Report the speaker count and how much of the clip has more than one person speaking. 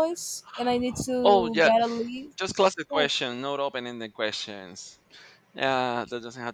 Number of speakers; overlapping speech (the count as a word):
two, about 10%